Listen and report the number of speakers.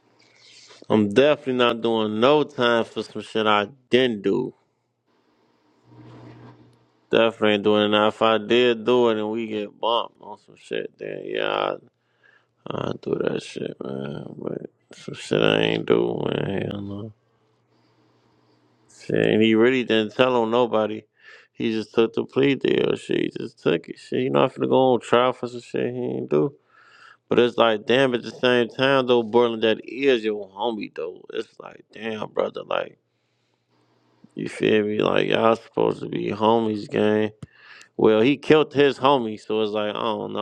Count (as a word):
one